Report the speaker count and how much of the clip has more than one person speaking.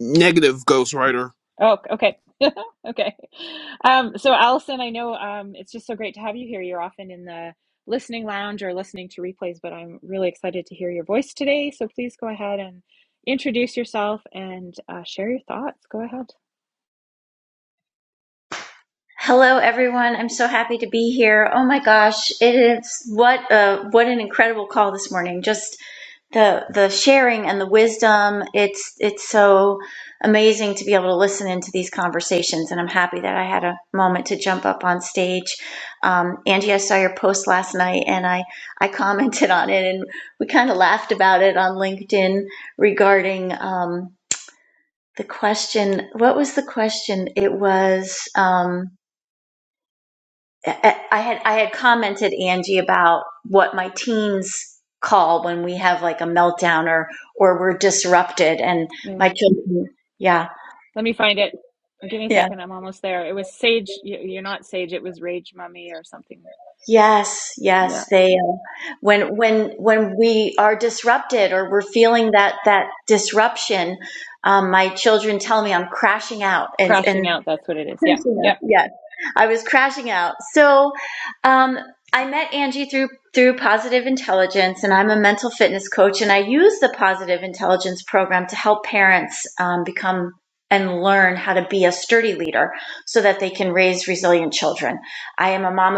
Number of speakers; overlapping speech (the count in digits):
3, about 2%